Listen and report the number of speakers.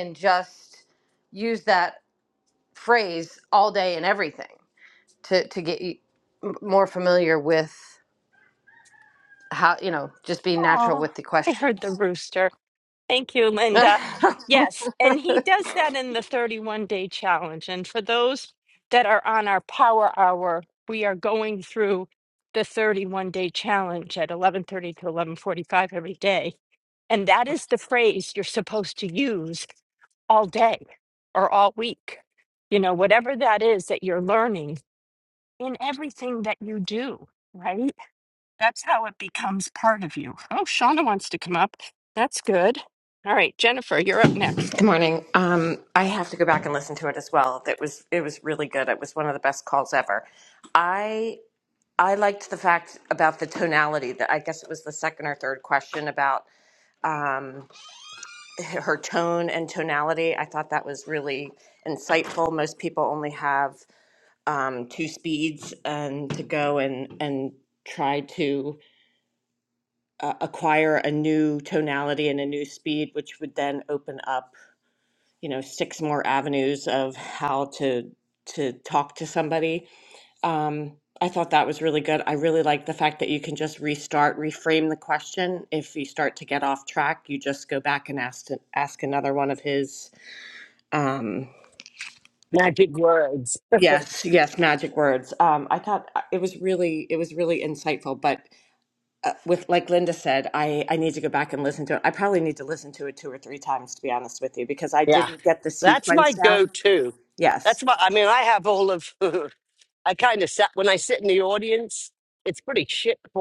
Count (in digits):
4